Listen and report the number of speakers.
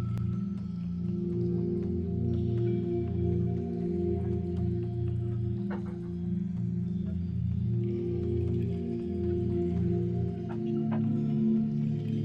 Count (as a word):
zero